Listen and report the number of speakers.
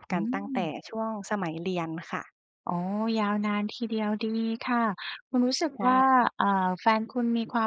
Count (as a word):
two